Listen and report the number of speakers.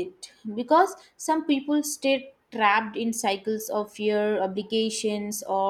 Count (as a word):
one